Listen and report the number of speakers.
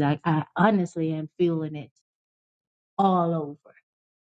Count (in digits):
1